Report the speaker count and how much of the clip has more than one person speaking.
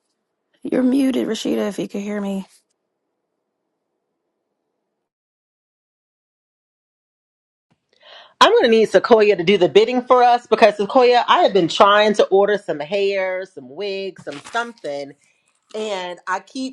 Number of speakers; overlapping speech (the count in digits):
2, no overlap